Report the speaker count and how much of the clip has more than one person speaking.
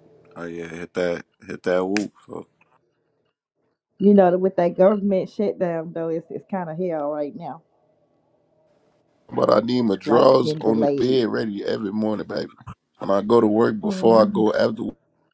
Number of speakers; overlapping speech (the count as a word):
three, about 11%